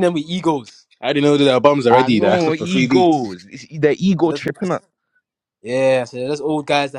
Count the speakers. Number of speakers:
3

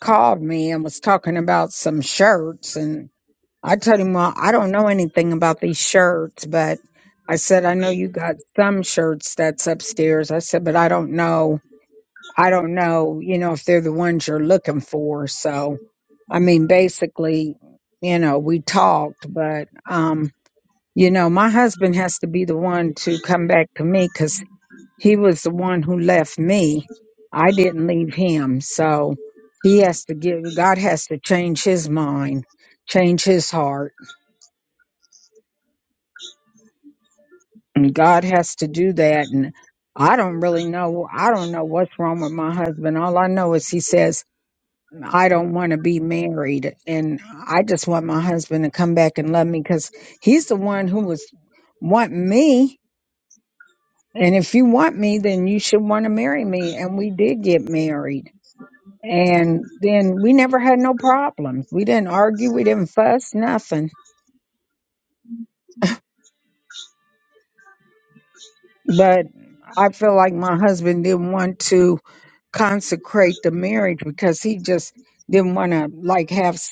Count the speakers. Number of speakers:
1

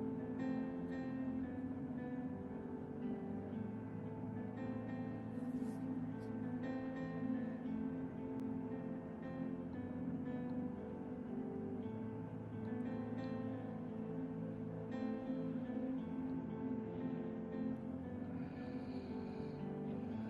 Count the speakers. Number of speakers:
0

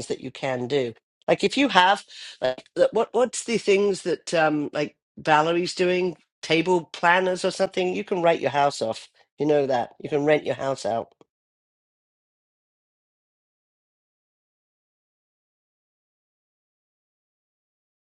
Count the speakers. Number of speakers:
1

